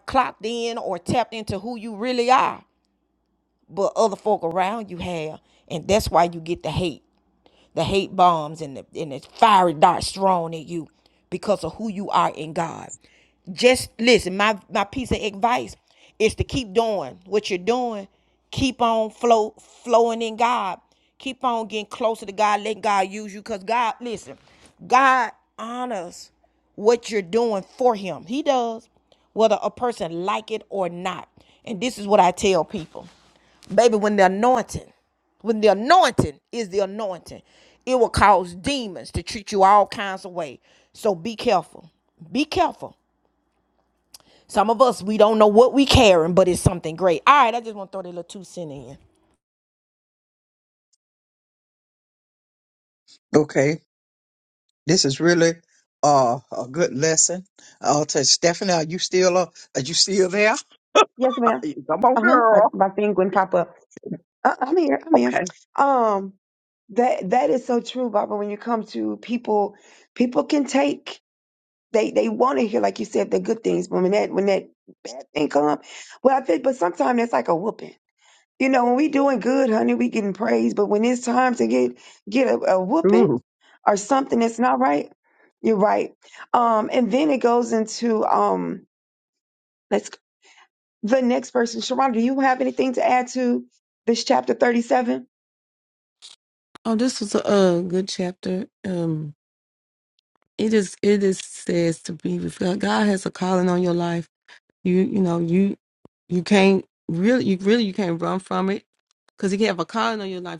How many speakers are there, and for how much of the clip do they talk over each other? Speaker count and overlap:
four, about 1%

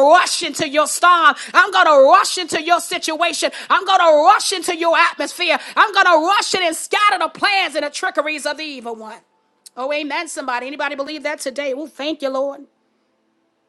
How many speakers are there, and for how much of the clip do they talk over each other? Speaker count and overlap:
one, no overlap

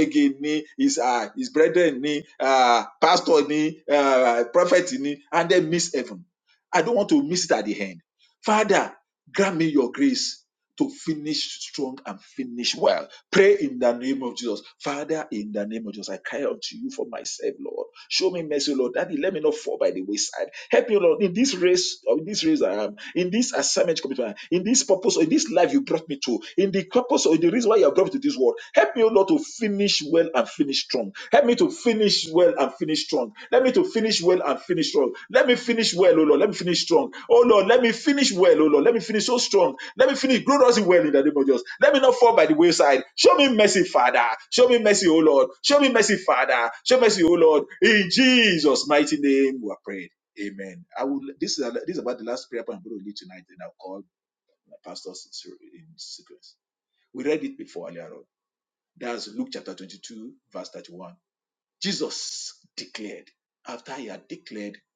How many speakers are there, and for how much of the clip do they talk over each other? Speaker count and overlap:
one, no overlap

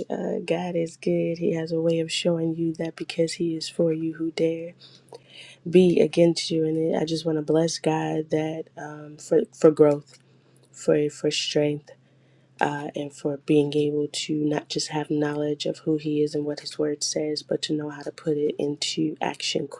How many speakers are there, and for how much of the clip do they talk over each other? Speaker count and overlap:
one, no overlap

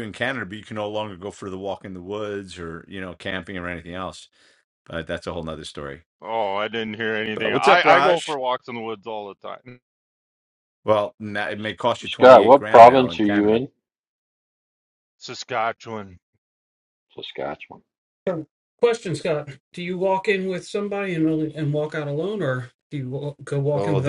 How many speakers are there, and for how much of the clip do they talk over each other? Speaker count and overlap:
four, about 12%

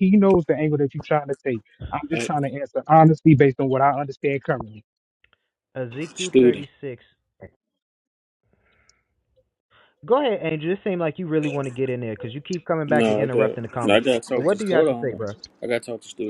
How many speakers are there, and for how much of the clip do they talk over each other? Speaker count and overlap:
three, about 18%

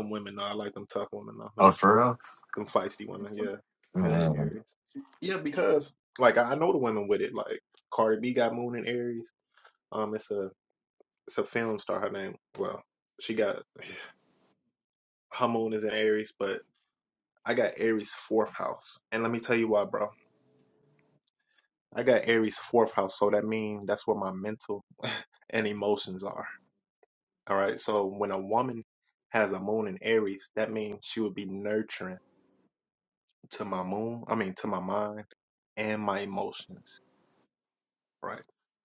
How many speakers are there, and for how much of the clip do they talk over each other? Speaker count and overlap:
two, about 1%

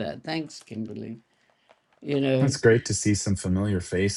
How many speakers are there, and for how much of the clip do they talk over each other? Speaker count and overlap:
two, about 3%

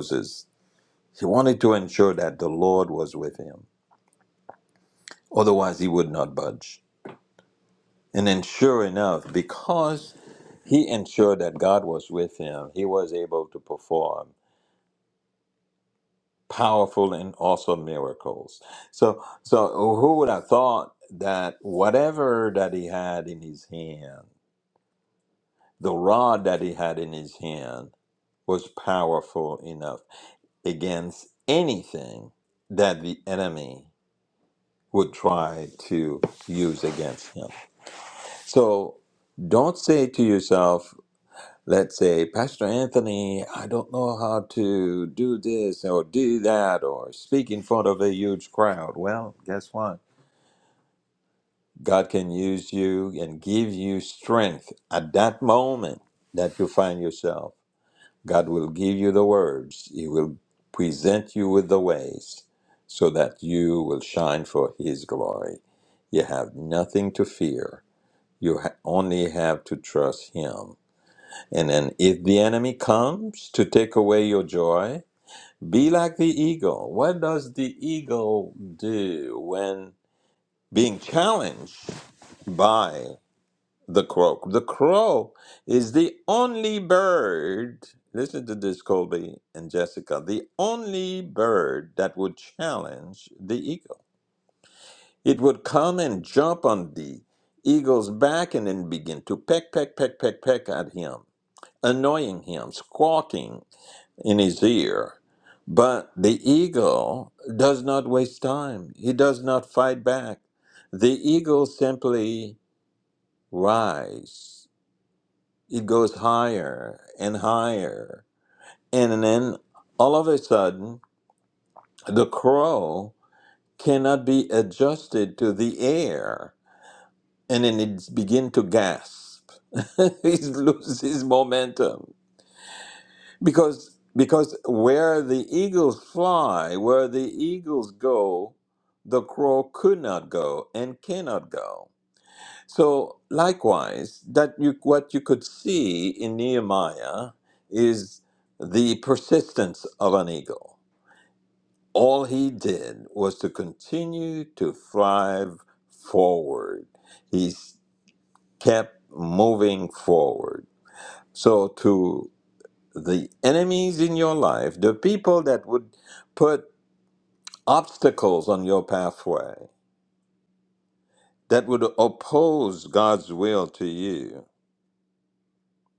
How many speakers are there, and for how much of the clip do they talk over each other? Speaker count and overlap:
one, no overlap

